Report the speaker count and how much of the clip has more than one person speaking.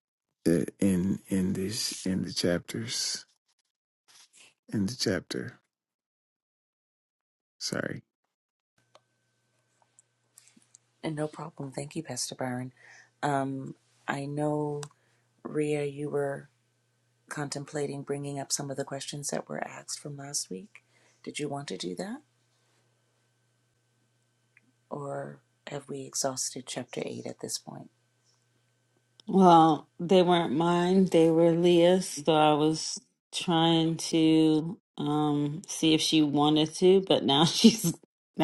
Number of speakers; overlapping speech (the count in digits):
3, no overlap